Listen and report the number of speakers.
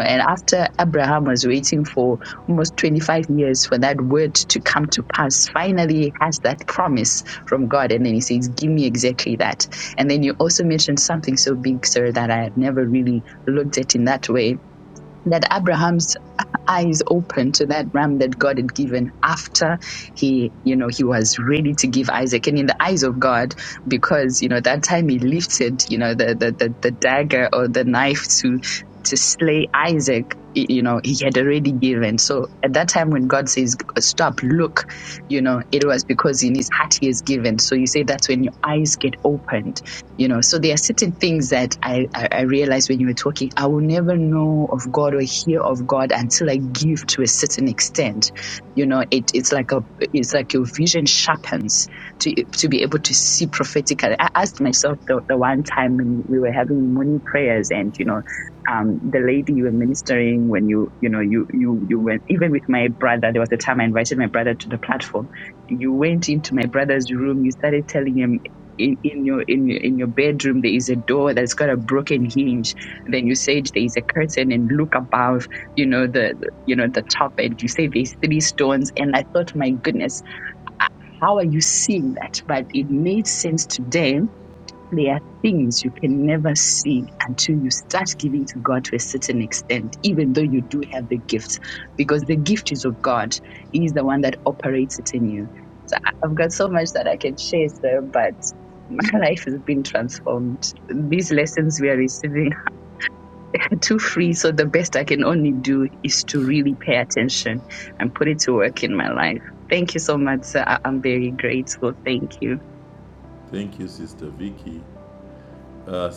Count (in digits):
2